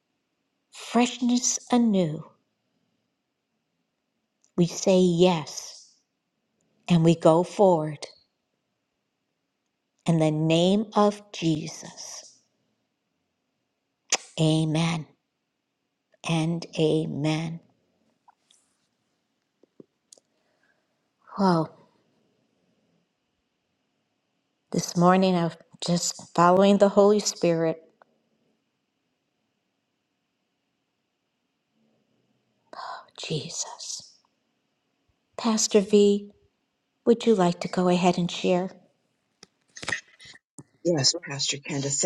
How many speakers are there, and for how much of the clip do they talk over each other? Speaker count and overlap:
2, no overlap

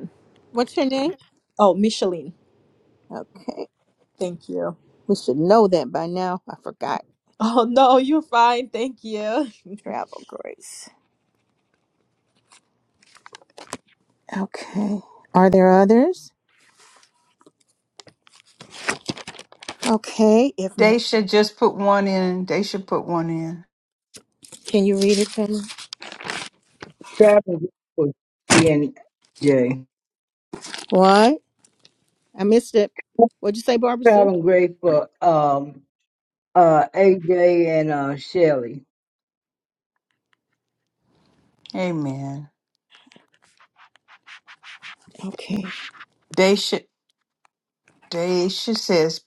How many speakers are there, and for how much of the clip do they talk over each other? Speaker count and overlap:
4, about 1%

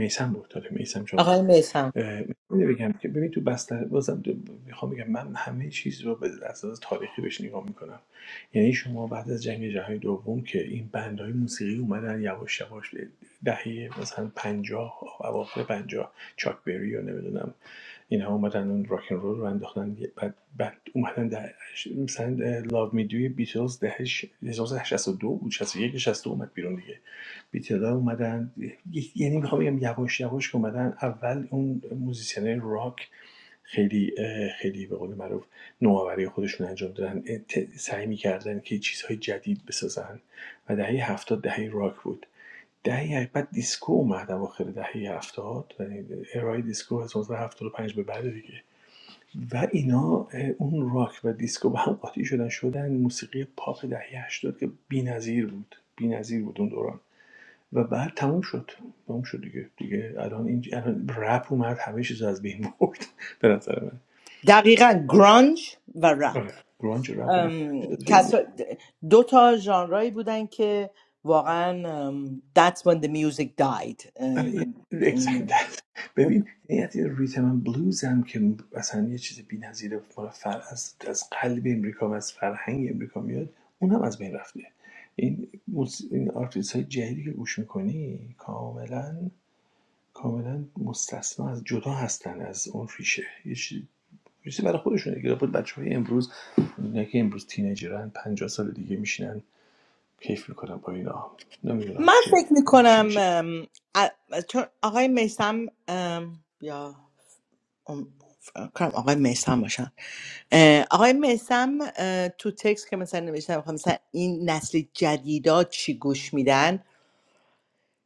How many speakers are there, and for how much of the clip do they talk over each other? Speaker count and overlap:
2, about 2%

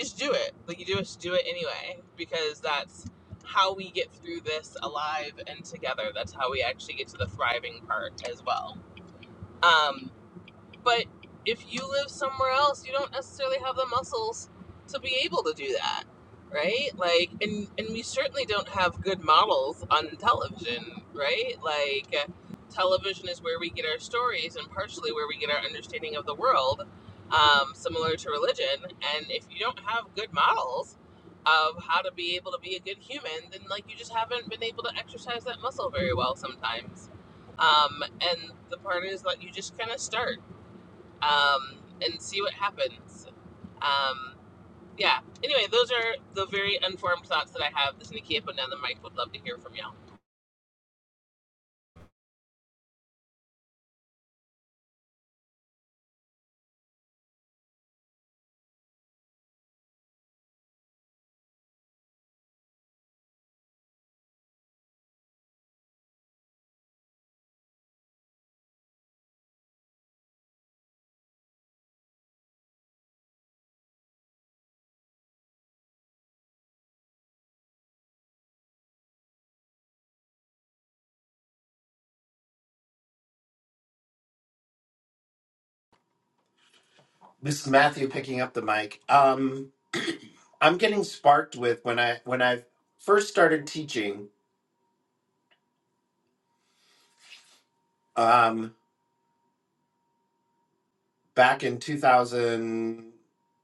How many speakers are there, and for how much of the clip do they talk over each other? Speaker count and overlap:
2, no overlap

